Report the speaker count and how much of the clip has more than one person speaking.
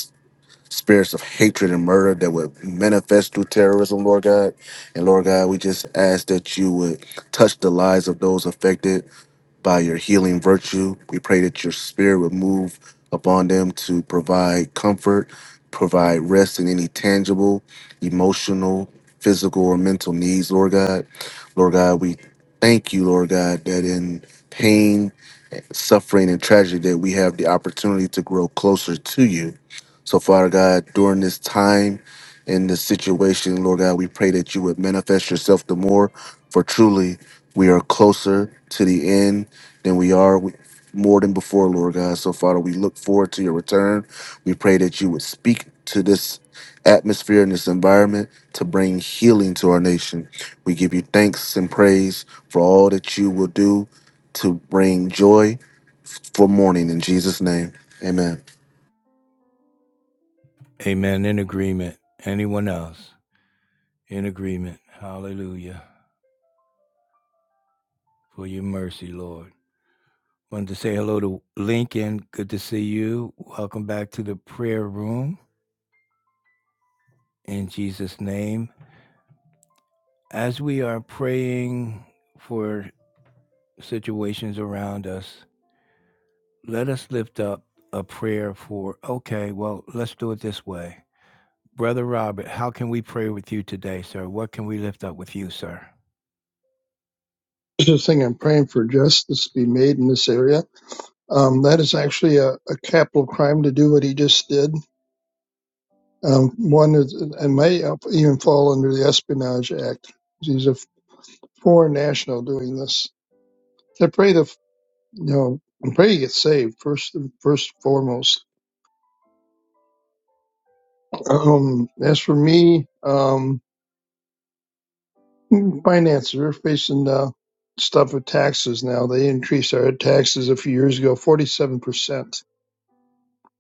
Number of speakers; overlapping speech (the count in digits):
3, no overlap